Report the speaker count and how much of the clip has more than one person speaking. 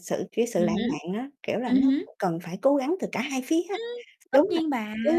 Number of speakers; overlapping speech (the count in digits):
2, about 22%